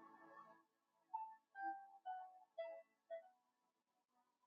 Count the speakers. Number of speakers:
zero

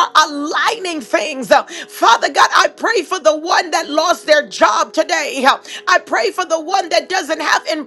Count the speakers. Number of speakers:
one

